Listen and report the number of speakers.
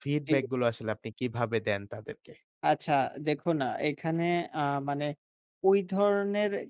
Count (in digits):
2